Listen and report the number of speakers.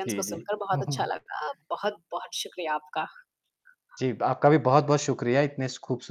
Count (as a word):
two